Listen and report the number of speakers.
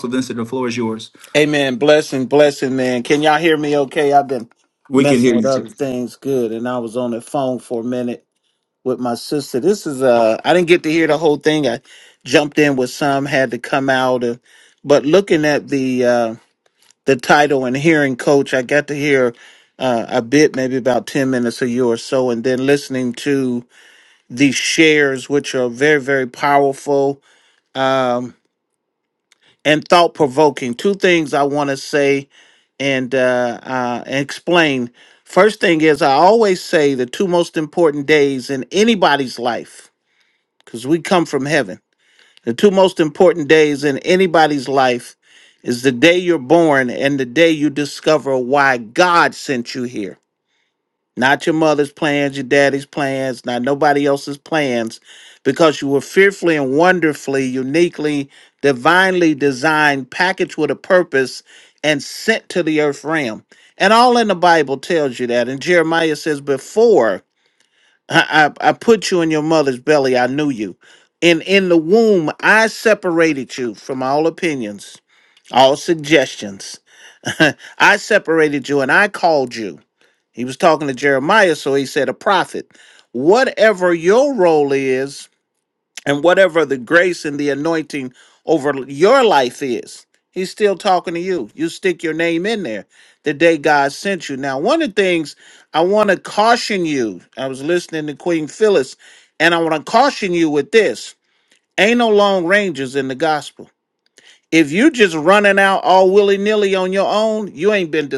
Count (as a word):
two